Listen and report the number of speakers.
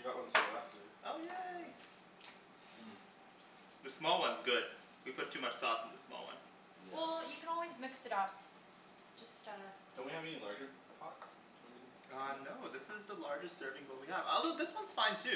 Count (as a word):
four